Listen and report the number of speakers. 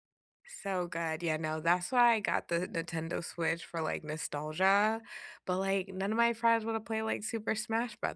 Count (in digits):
1